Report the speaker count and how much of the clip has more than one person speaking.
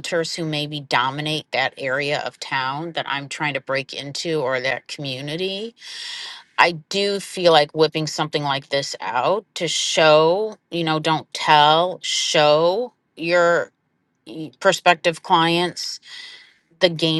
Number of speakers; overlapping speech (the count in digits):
1, no overlap